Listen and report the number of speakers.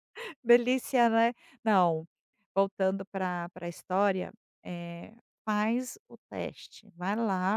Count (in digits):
1